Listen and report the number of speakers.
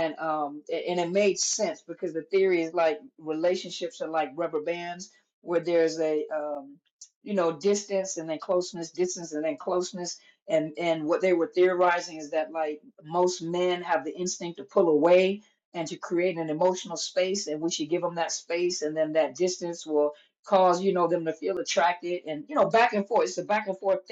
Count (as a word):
one